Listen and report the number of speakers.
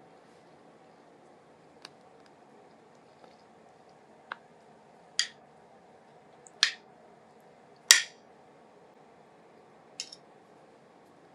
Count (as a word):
zero